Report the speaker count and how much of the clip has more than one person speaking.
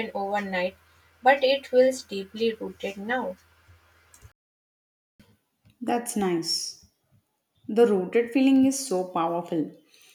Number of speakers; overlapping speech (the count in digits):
2, no overlap